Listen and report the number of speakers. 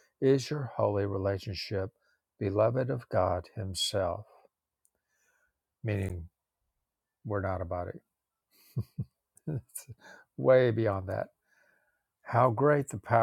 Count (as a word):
one